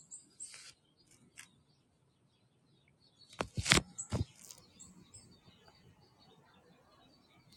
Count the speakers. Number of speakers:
0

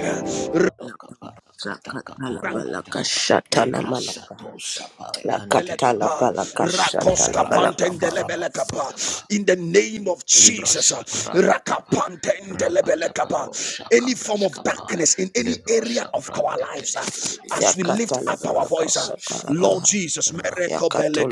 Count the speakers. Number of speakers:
3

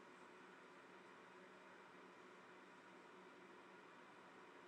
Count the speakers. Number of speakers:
0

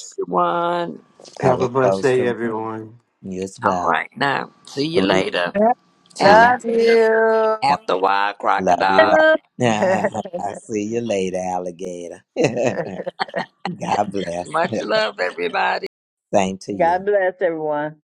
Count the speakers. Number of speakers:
5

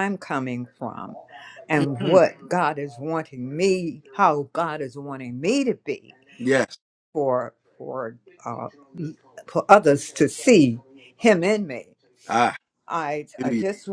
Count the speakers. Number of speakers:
2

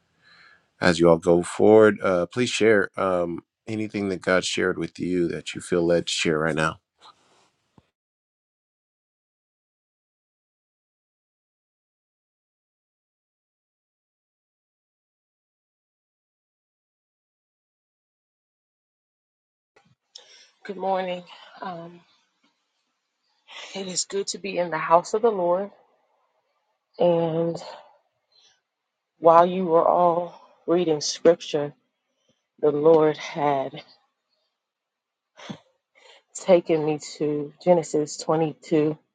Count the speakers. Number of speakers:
2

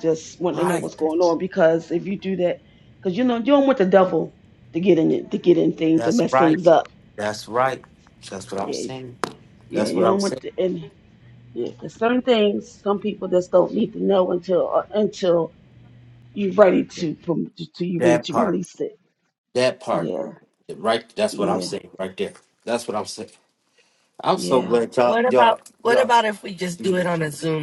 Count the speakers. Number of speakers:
3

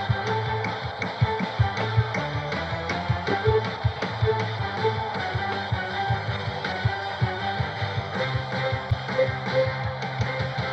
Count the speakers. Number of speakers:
0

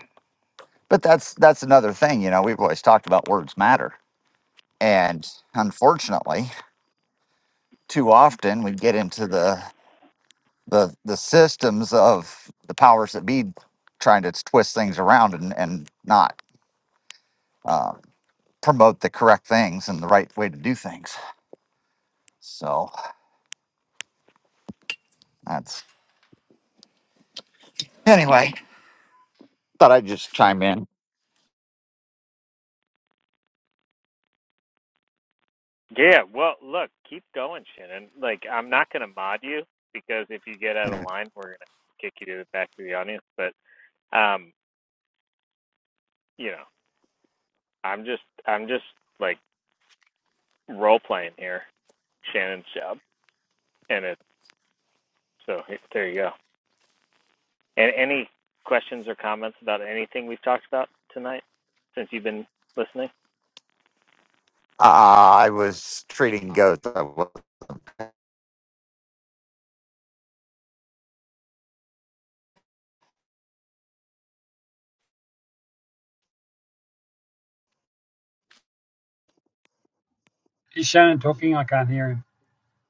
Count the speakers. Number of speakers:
3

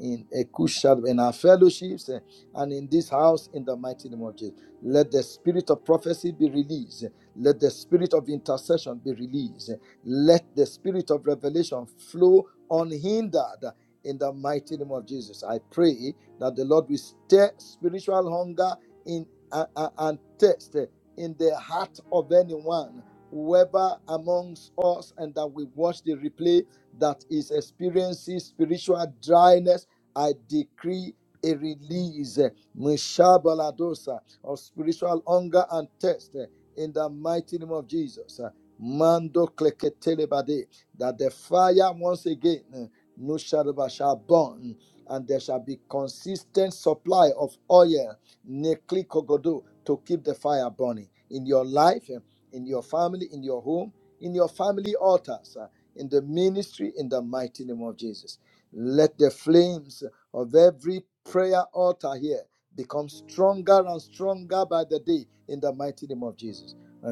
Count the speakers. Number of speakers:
1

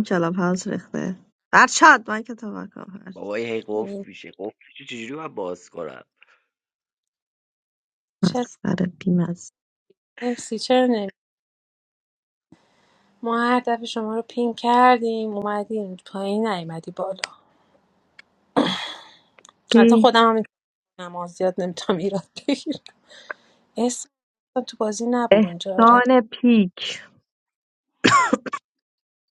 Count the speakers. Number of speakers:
3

